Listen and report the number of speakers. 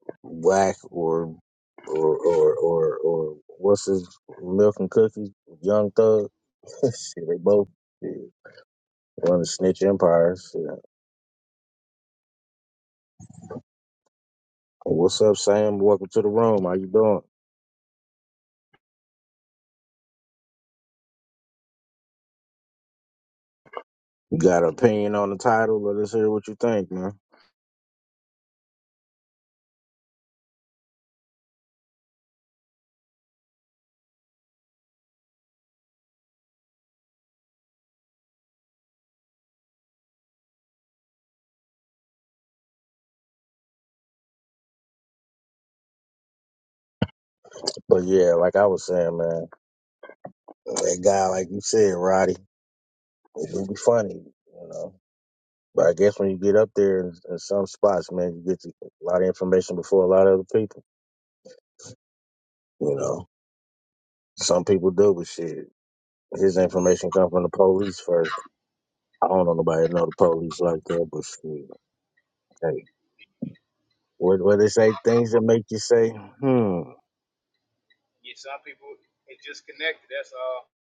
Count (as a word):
two